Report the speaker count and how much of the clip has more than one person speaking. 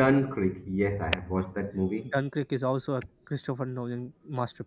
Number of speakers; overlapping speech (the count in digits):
2, about 2%